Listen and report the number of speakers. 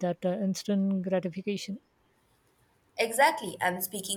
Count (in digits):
2